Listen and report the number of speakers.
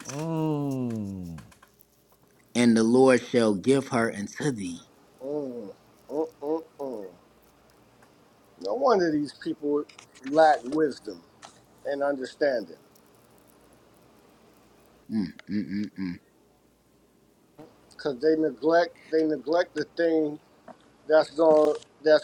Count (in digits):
3